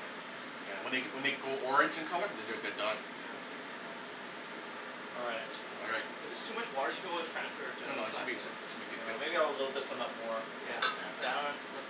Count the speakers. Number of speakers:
three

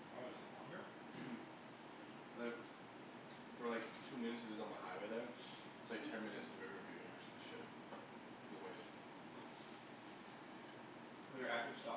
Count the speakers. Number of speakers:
two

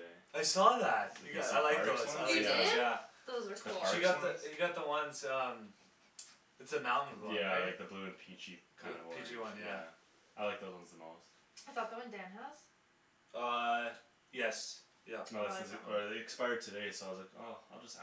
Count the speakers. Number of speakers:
three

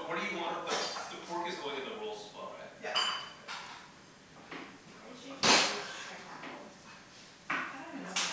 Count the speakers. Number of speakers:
three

